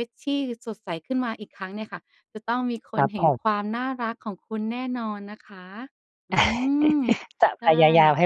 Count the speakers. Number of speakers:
two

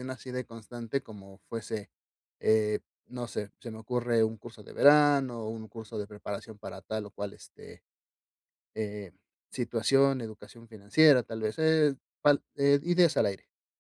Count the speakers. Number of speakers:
one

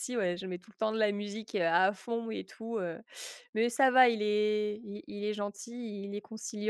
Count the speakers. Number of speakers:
one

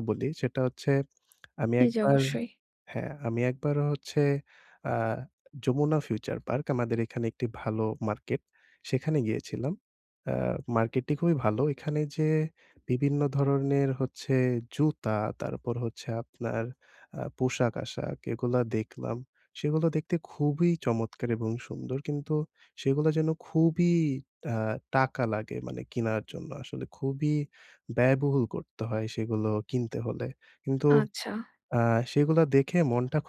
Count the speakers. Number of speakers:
two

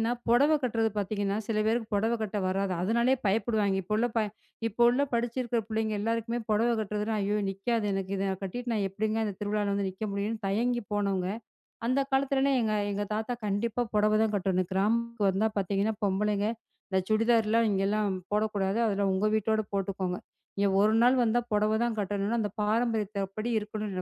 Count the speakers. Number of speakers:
one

